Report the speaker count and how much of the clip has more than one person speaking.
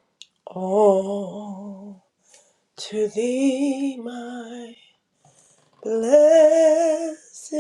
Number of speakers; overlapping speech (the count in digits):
1, no overlap